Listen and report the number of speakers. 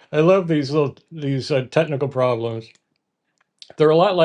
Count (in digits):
1